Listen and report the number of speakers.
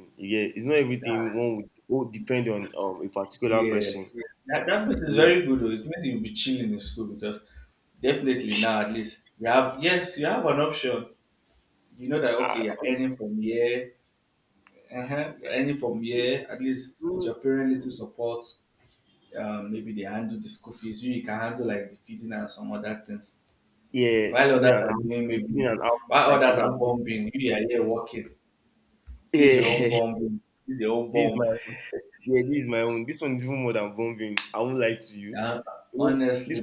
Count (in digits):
2